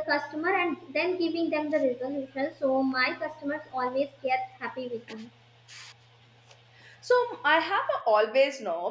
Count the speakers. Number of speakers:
2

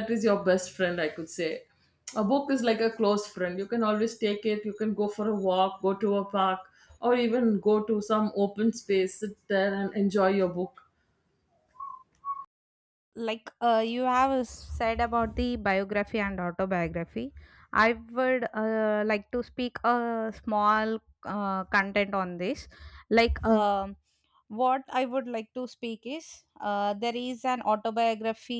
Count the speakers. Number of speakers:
2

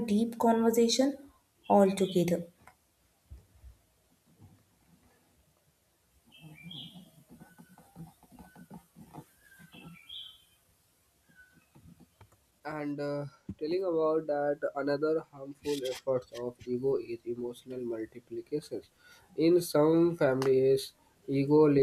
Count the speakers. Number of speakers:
2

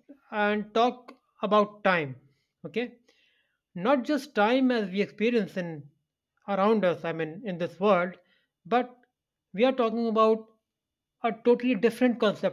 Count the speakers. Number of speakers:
1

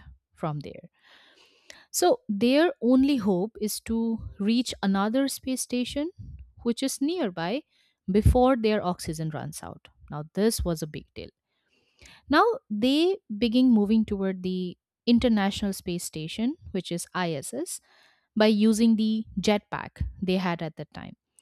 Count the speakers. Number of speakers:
1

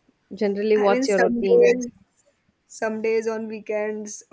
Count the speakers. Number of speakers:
2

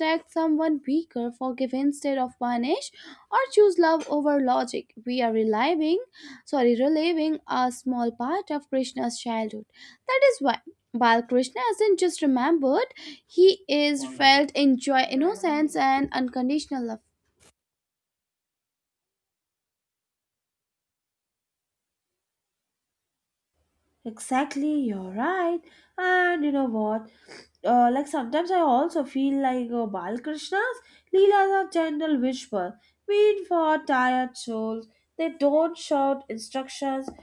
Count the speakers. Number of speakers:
2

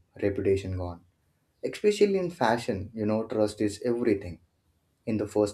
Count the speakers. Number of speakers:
1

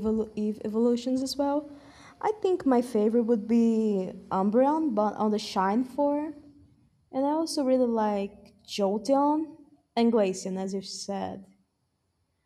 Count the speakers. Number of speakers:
1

